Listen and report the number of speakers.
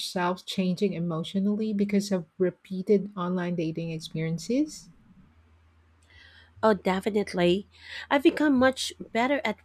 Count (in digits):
2